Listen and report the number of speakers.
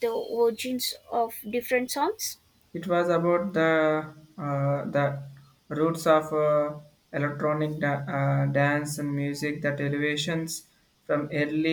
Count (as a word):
two